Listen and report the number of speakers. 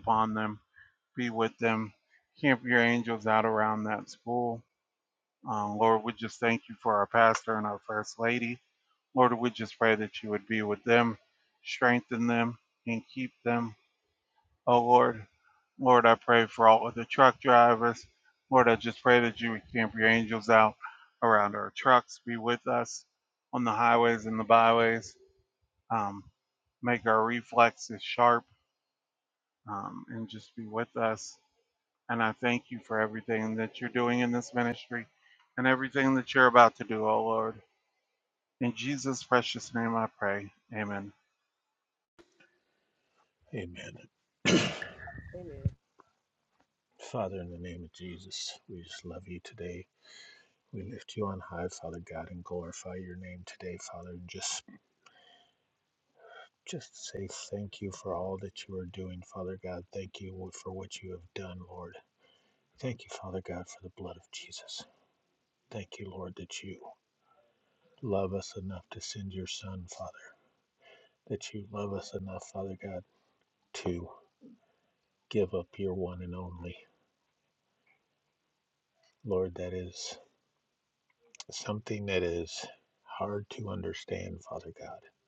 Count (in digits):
2